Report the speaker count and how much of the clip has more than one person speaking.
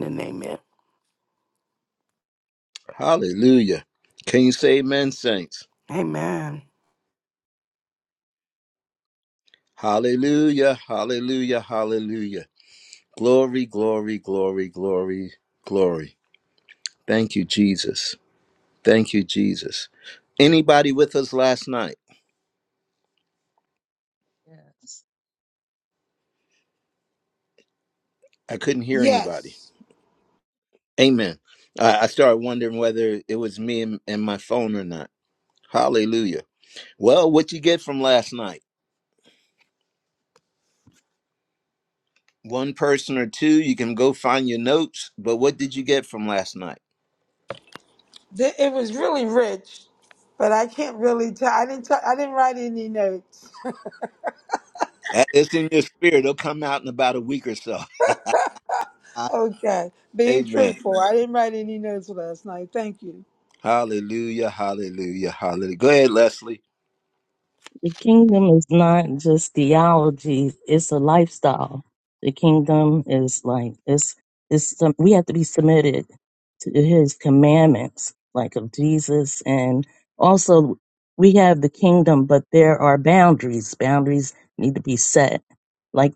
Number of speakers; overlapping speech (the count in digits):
4, about 1%